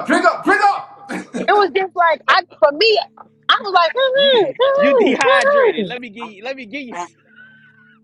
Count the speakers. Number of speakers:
3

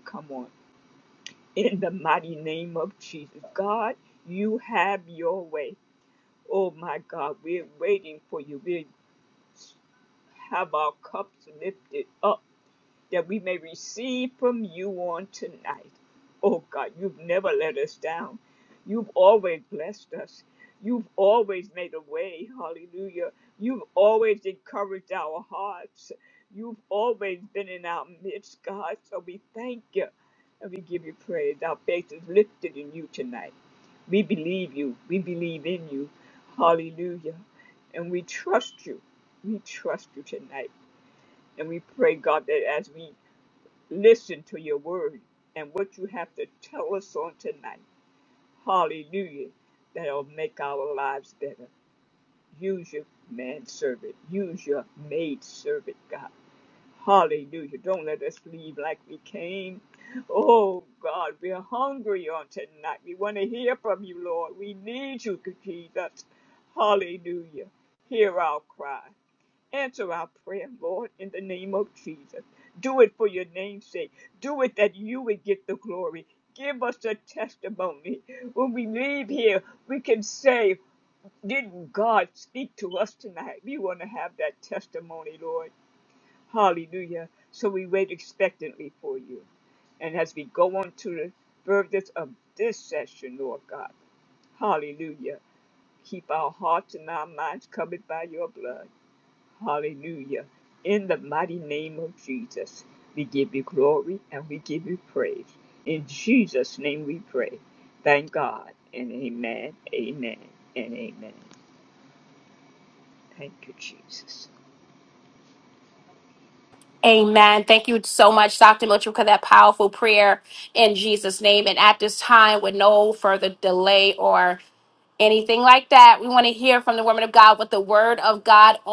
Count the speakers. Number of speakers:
2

